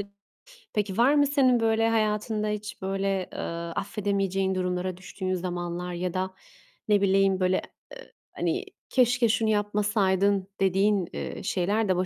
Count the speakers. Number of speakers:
1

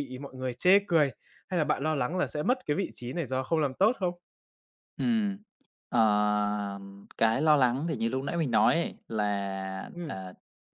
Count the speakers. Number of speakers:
2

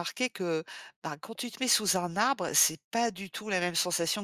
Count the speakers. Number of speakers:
1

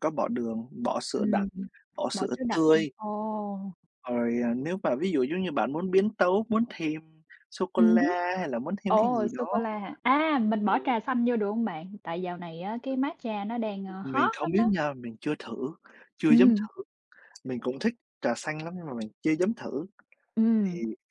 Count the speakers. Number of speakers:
2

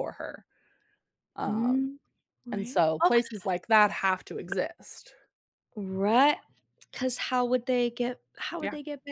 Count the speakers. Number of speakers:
2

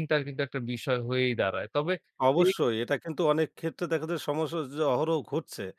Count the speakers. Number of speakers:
2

